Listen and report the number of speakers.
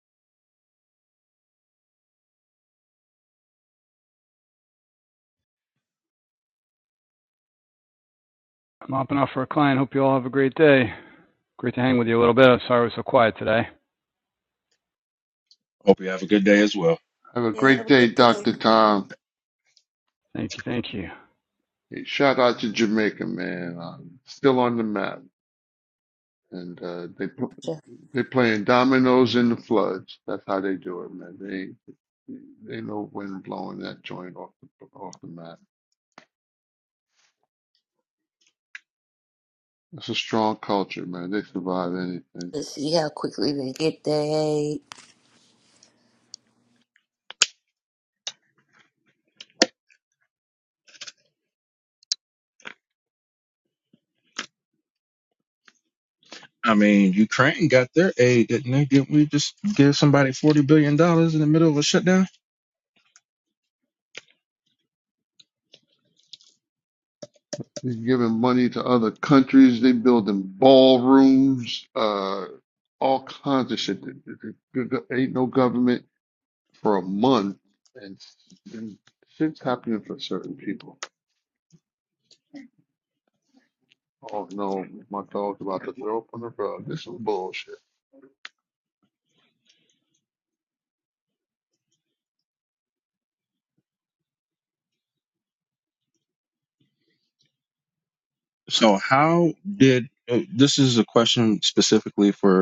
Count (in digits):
4